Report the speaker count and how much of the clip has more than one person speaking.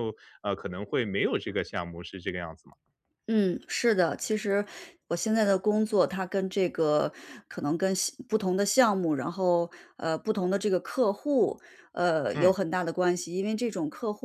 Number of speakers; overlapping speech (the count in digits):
2, about 1%